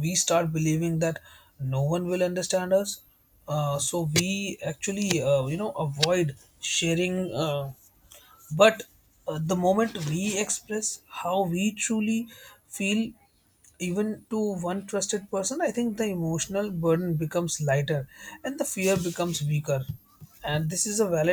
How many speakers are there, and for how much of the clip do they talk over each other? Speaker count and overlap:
1, no overlap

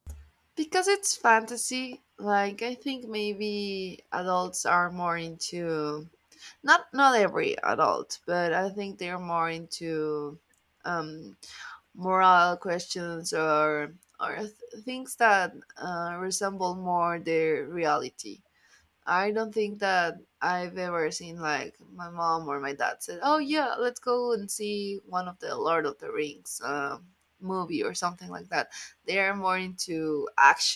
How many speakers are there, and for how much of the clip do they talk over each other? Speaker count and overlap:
1, no overlap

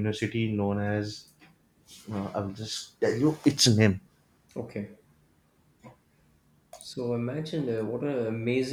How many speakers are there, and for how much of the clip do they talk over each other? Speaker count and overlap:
2, no overlap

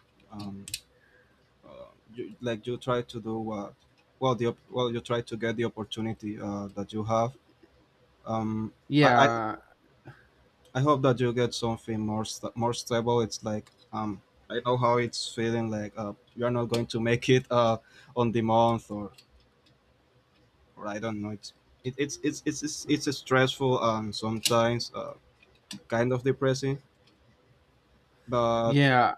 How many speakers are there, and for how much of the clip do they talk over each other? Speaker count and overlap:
2, about 2%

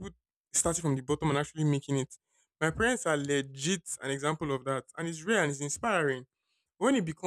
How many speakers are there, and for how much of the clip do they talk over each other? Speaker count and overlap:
1, no overlap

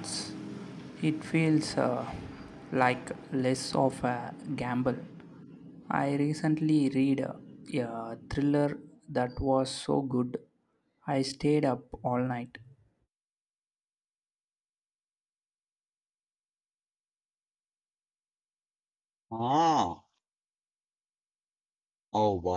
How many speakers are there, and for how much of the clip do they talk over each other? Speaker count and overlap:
2, no overlap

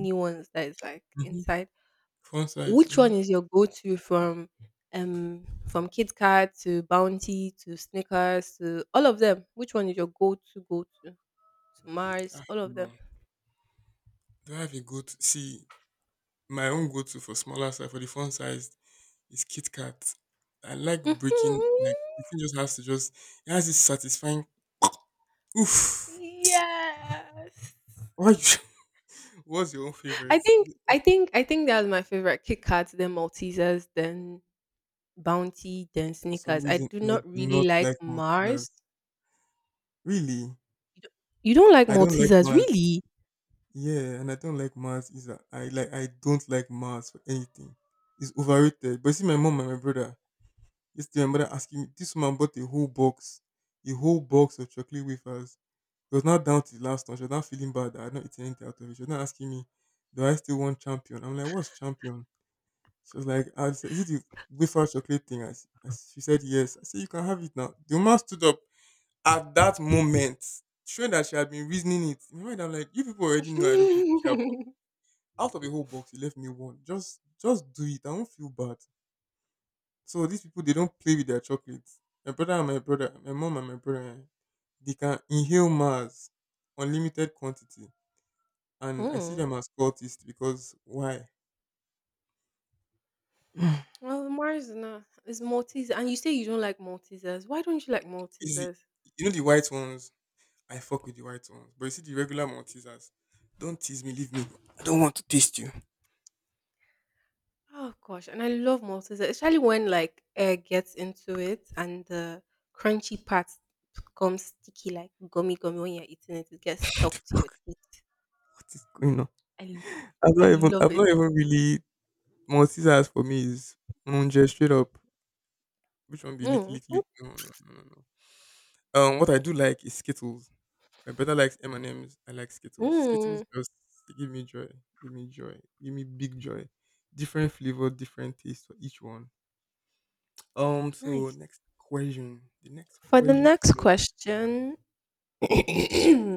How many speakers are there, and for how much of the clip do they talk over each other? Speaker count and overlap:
2, about 6%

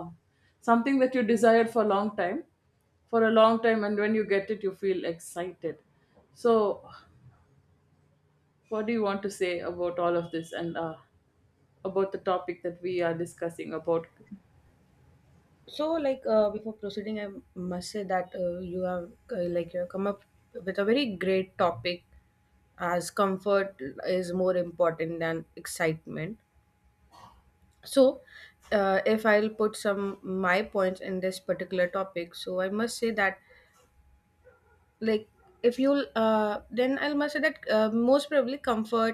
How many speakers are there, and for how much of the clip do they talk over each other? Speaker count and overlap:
2, no overlap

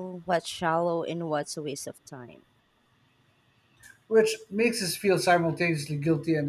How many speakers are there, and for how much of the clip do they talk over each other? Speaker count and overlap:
2, no overlap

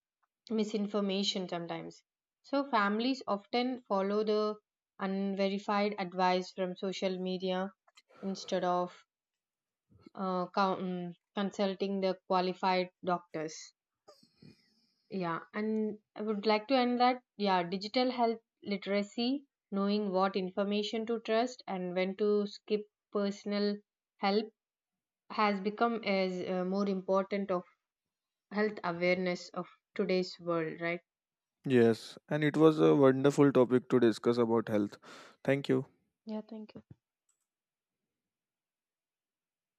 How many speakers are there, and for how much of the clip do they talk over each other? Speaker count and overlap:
2, no overlap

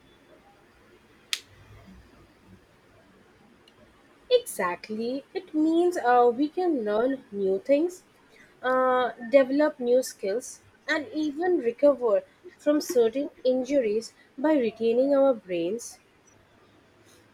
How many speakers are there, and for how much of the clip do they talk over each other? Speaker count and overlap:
1, no overlap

